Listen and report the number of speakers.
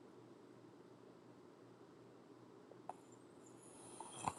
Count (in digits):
0